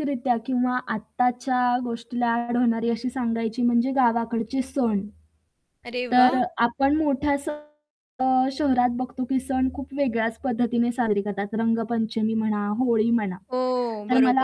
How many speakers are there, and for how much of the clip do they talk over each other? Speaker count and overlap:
two, about 5%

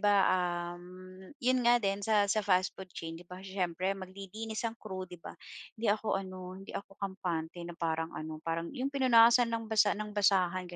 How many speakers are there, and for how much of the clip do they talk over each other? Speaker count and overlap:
one, no overlap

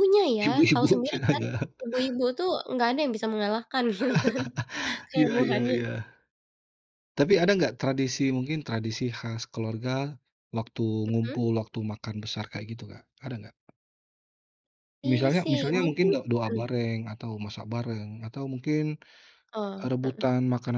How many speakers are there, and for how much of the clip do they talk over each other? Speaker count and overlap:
two, about 19%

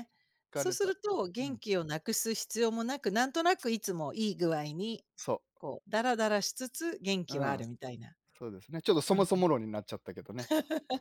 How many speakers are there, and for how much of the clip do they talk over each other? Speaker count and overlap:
two, about 7%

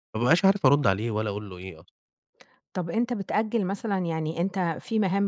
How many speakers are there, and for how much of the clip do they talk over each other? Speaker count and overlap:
two, no overlap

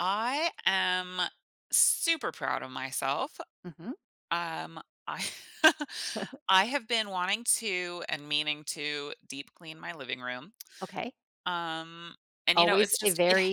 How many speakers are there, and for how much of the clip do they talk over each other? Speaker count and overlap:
two, about 7%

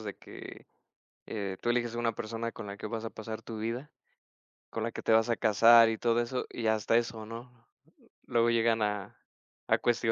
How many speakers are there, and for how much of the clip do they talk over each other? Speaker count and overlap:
one, no overlap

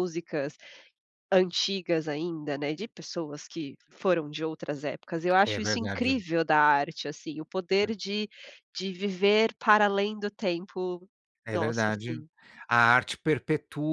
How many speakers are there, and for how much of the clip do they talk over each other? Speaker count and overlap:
two, about 10%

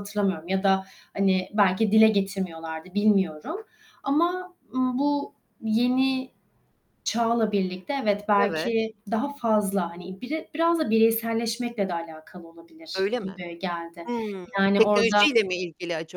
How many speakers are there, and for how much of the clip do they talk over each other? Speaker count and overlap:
two, about 10%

